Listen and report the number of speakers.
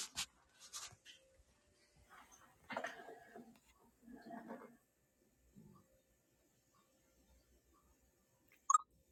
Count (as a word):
zero